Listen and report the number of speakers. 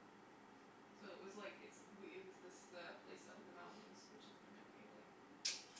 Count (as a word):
one